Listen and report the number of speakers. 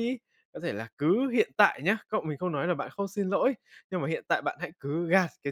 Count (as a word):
one